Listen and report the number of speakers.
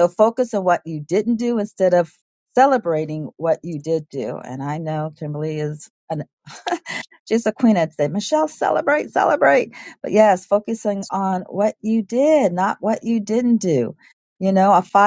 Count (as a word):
one